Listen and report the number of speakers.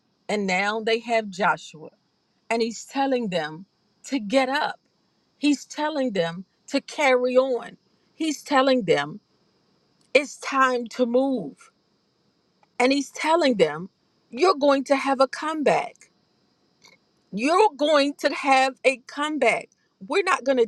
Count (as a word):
one